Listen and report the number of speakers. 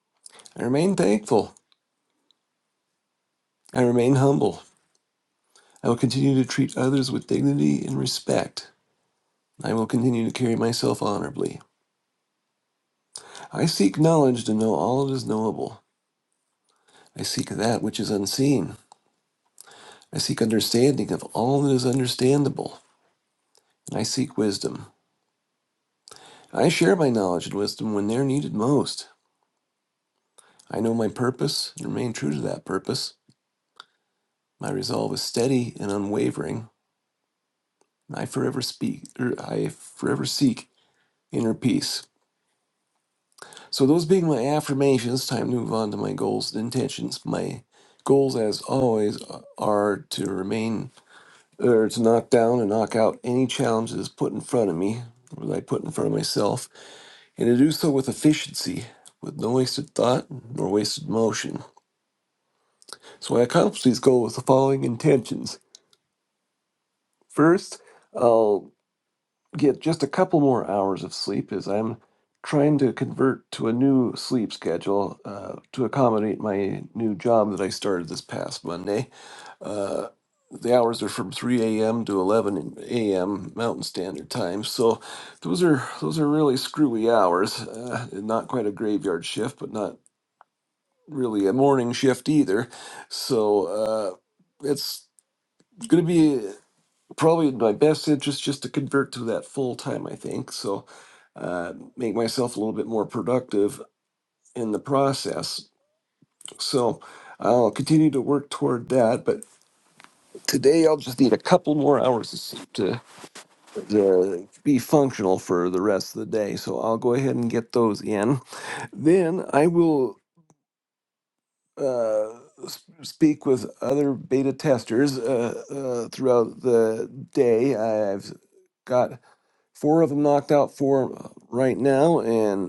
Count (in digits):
1